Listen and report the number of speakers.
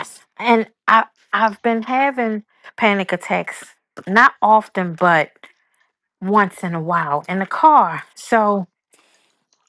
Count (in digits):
1